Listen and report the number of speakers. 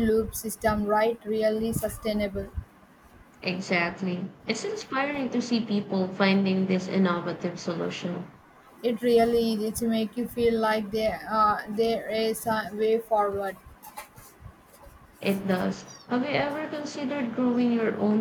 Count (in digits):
2